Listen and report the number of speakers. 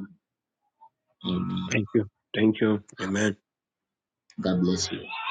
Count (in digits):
2